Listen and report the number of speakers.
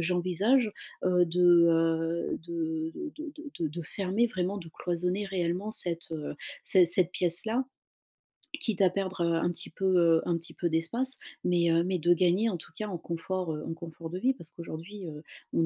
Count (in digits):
1